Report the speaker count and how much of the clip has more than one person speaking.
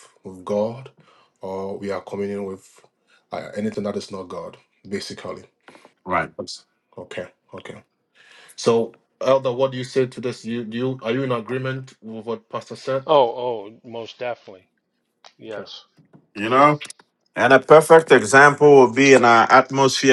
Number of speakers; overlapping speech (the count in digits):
3, about 2%